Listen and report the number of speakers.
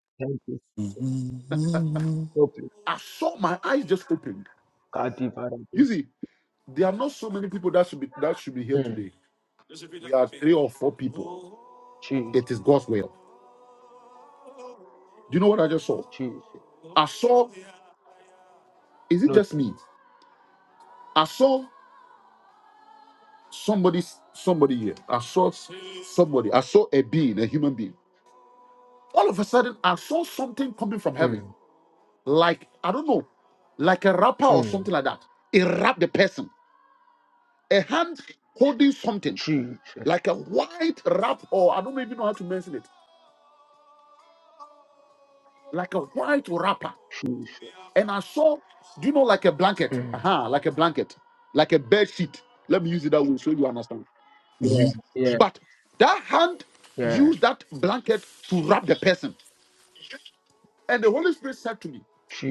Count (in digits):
3